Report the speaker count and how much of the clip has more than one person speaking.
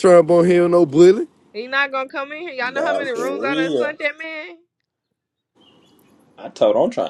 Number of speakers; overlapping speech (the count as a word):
three, about 18%